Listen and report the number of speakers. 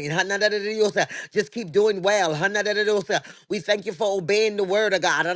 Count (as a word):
one